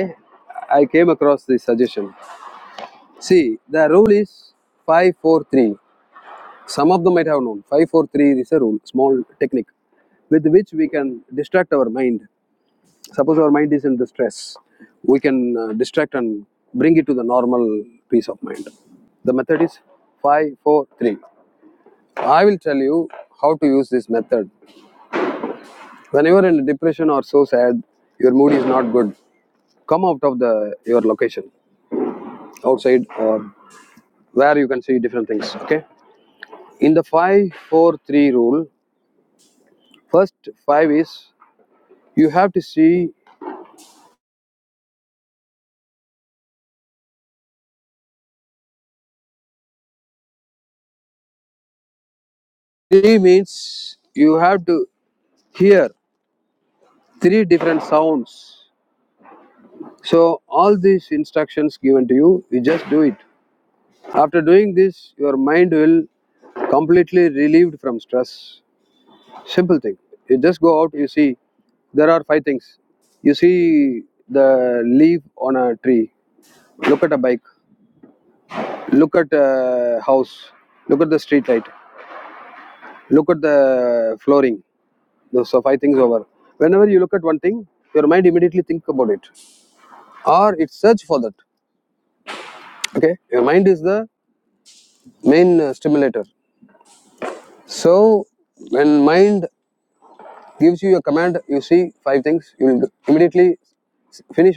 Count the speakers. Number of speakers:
1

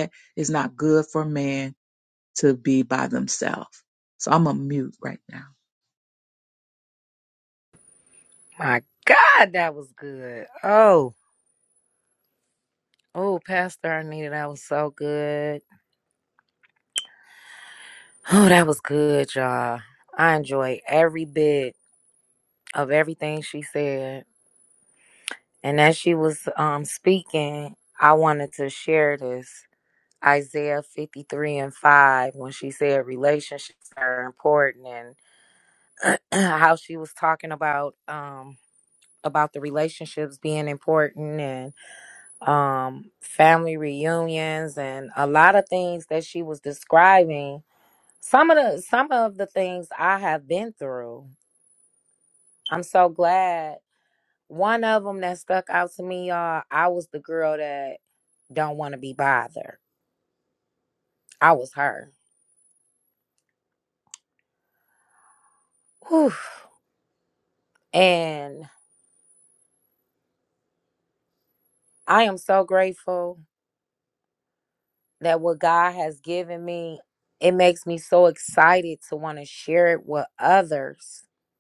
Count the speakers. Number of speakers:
2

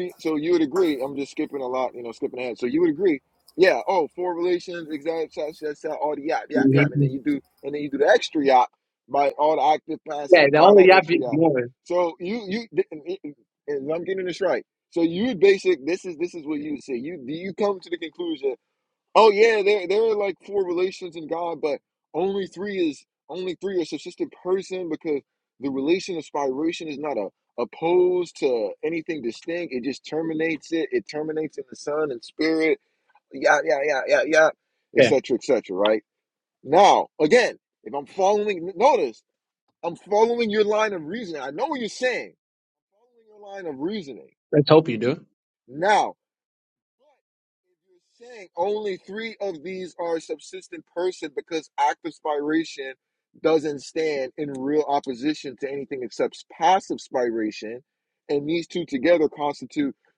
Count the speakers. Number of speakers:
2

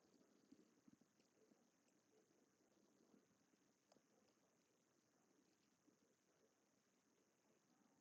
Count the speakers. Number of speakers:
0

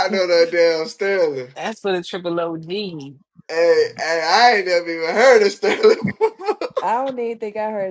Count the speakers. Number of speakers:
3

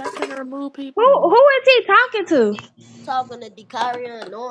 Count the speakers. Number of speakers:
3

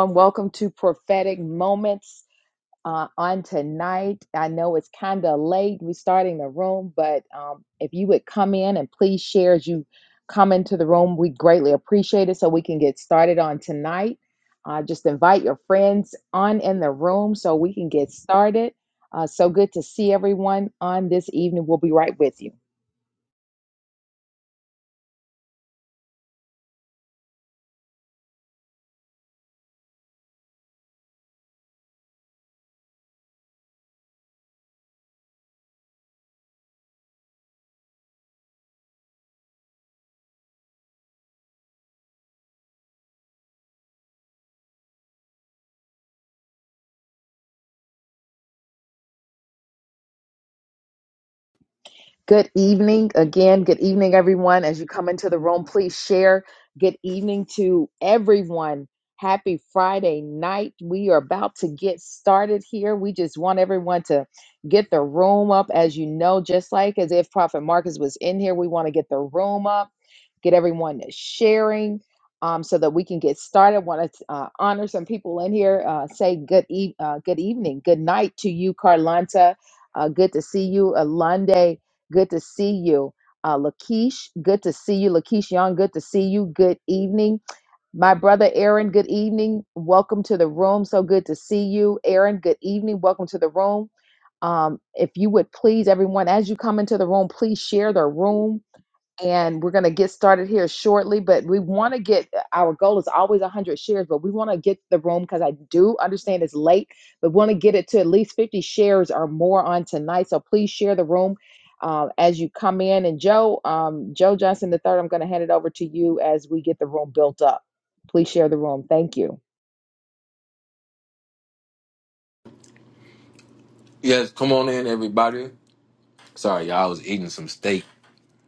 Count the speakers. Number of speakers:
2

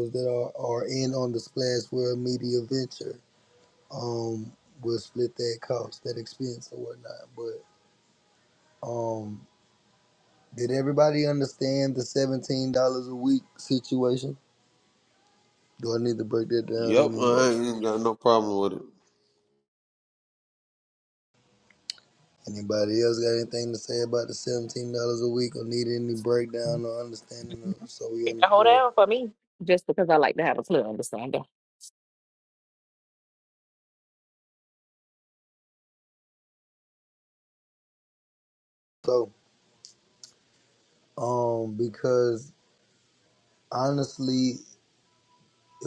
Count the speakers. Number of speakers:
3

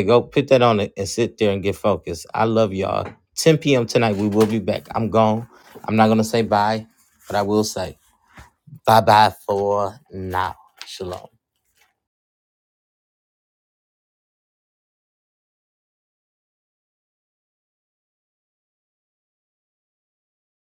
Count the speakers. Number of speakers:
1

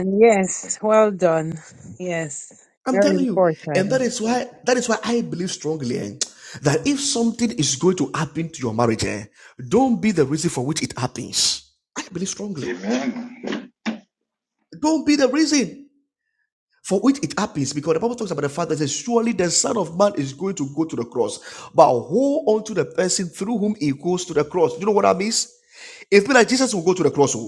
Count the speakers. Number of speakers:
3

